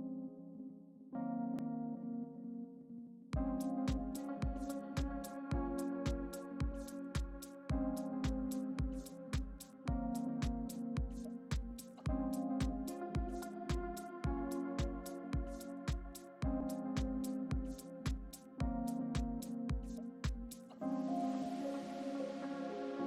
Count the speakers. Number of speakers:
0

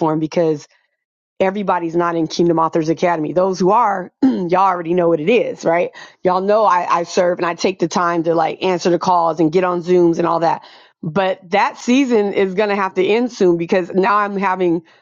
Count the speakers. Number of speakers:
1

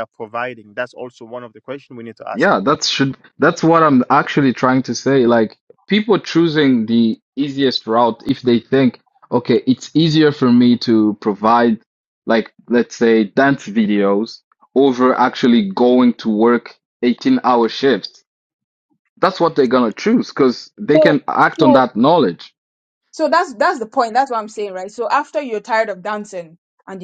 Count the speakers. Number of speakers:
3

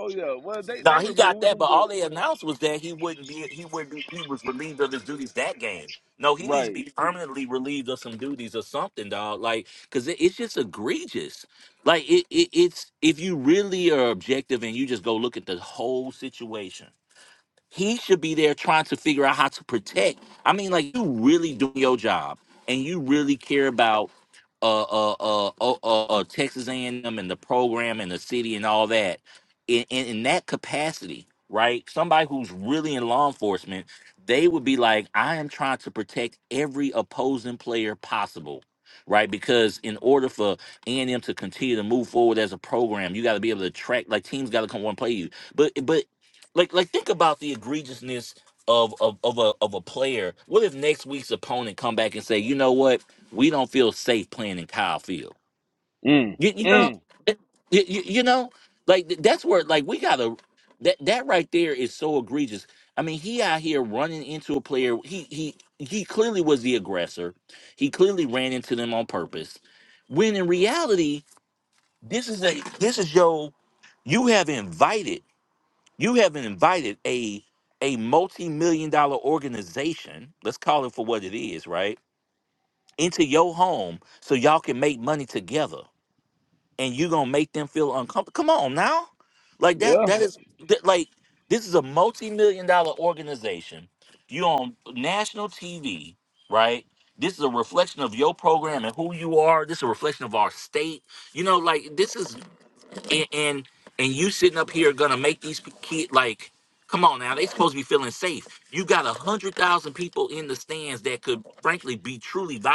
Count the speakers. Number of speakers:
2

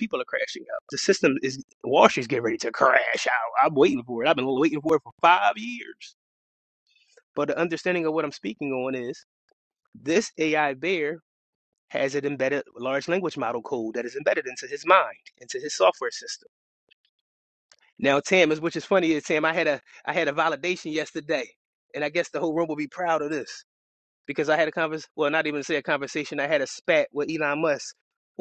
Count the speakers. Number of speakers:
1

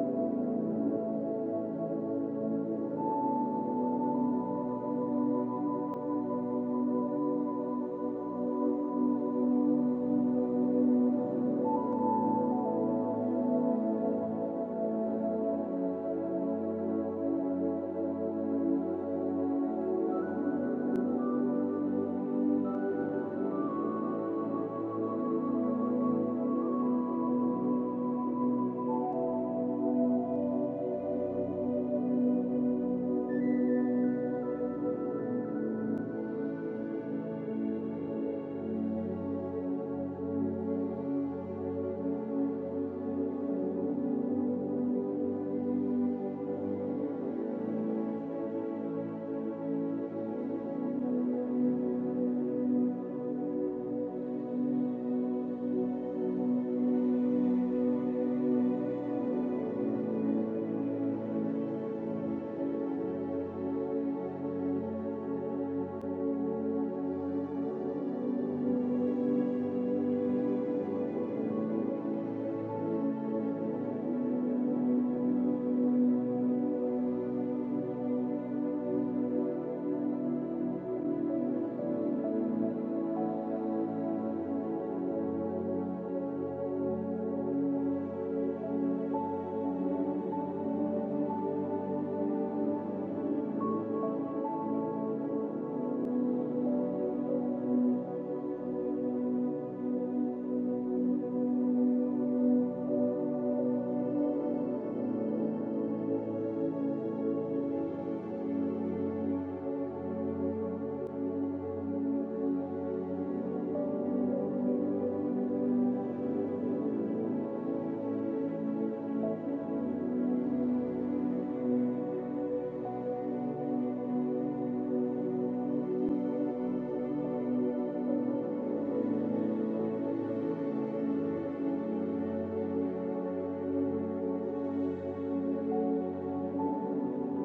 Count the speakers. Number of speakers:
0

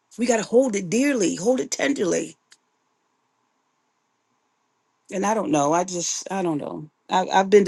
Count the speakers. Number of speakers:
1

